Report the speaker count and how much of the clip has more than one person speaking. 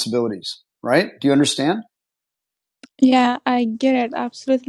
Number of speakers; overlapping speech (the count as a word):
two, no overlap